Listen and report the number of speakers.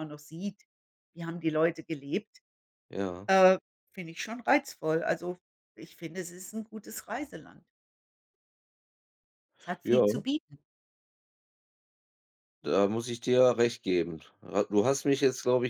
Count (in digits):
2